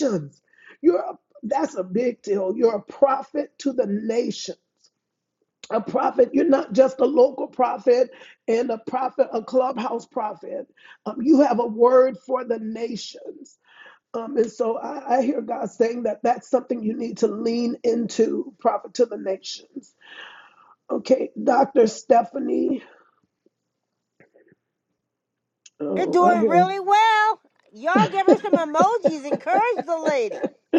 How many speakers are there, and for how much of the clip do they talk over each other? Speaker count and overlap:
two, about 2%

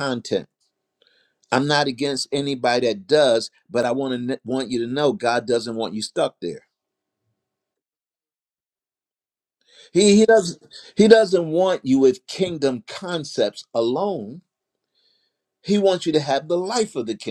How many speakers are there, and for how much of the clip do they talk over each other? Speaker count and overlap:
one, no overlap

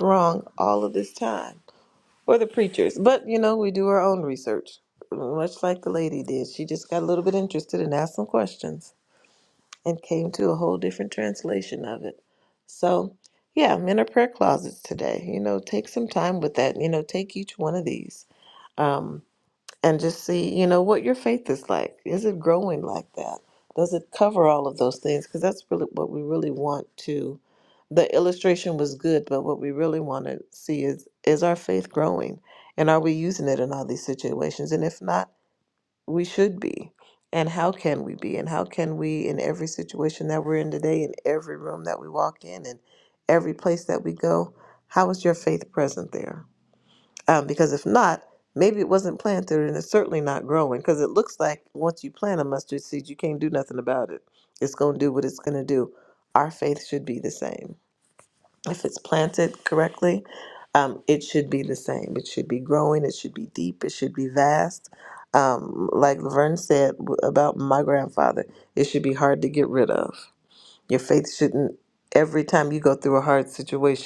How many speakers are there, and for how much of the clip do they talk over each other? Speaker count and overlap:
one, no overlap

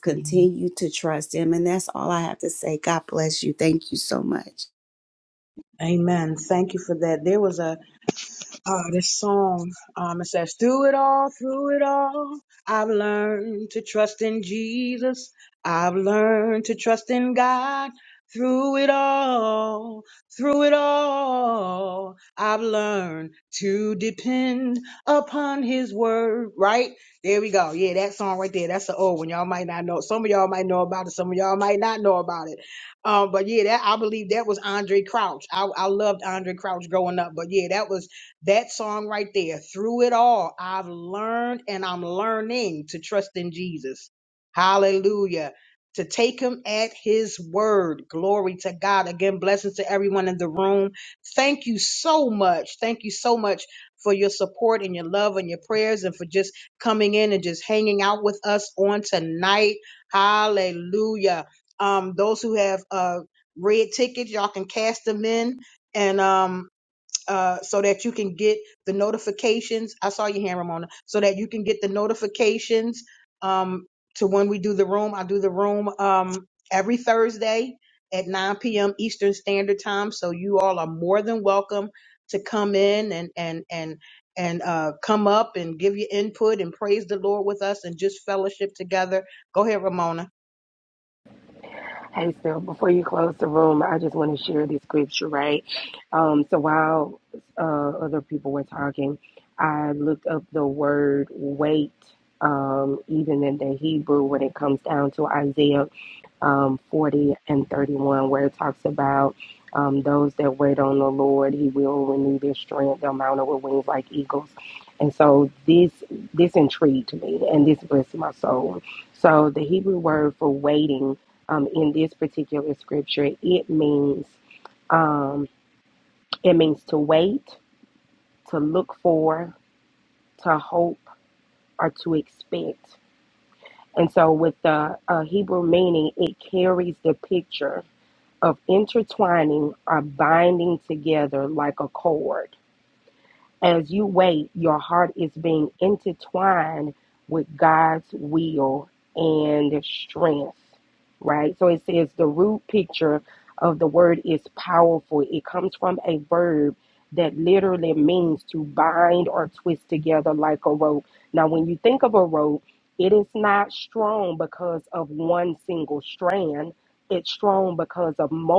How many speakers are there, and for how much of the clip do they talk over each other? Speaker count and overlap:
three, no overlap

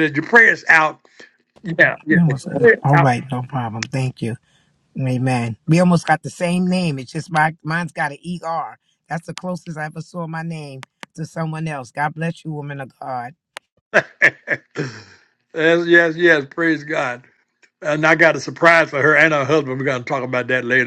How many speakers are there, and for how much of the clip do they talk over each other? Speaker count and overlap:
two, about 5%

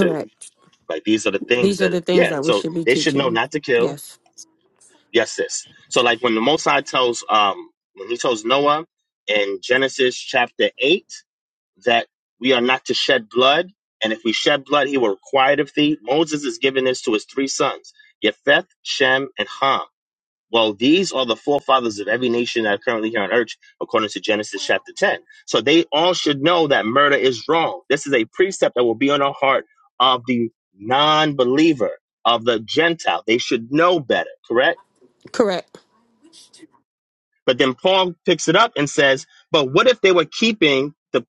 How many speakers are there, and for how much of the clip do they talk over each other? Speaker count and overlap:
two, about 5%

